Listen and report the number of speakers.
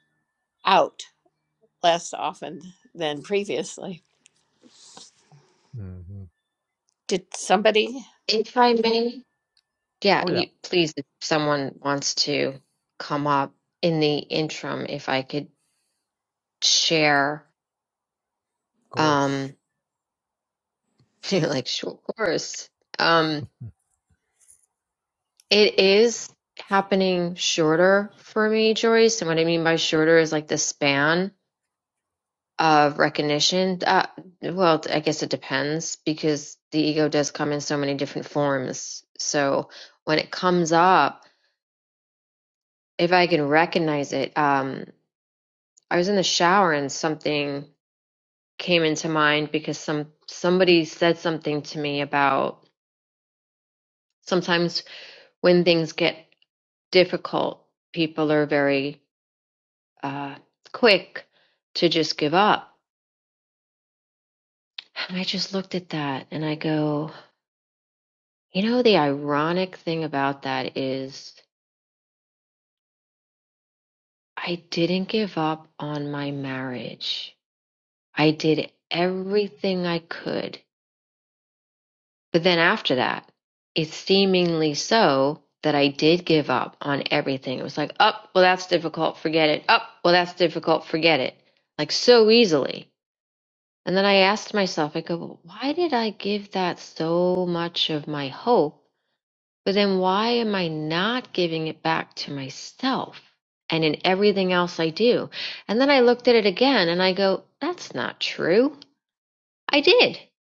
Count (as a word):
three